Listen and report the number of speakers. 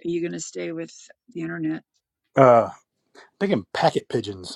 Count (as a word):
two